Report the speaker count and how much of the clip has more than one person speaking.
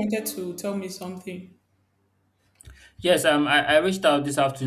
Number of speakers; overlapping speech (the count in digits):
2, no overlap